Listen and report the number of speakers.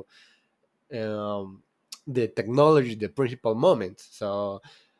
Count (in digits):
1